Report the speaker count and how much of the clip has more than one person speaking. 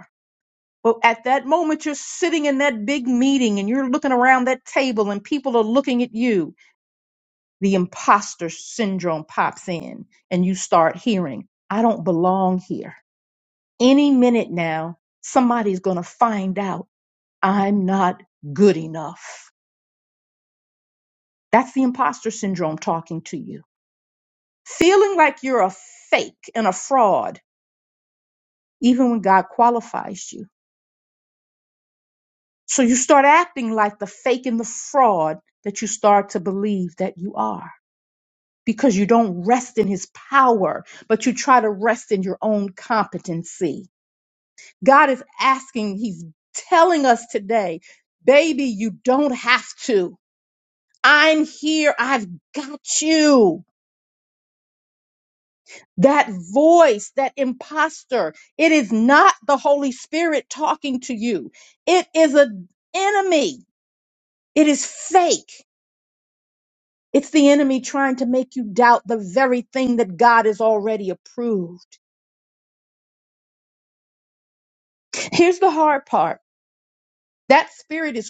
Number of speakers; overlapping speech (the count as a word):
one, no overlap